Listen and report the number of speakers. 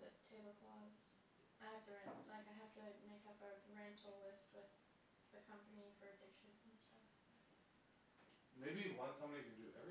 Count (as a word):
two